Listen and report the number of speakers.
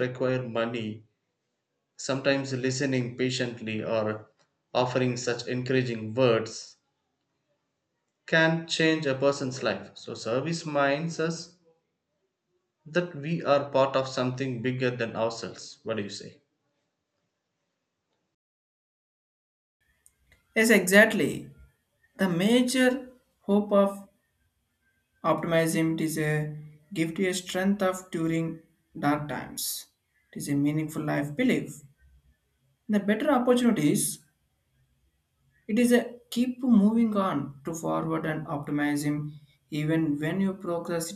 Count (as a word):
two